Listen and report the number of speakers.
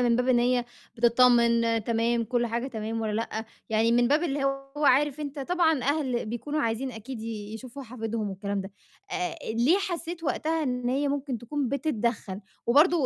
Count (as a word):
one